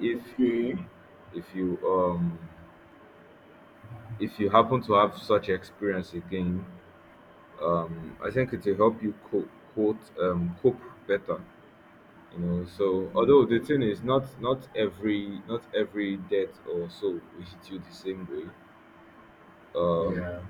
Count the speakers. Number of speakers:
2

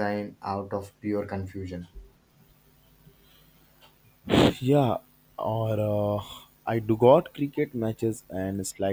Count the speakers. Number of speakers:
2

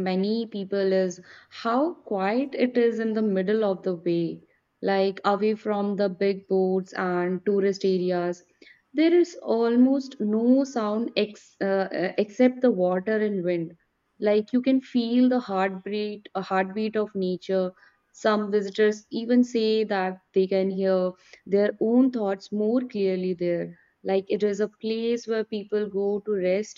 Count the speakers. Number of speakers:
1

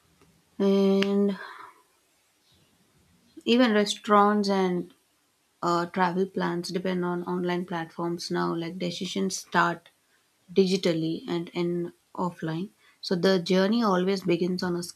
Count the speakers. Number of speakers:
1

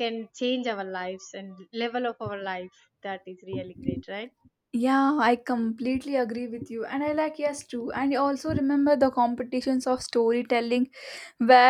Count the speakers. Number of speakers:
2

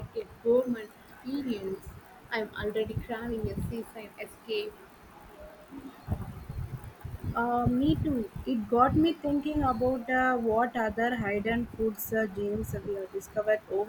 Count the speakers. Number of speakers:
2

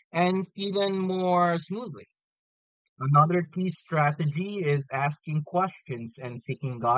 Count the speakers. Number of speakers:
1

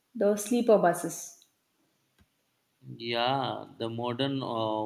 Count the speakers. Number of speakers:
2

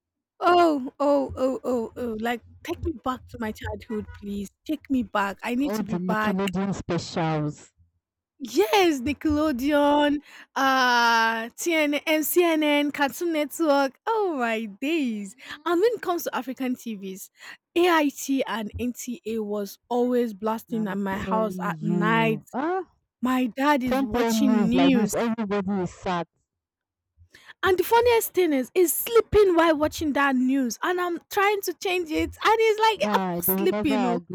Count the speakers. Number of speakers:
2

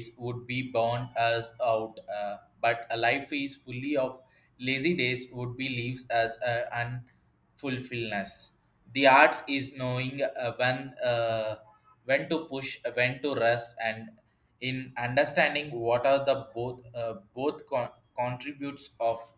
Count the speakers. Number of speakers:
1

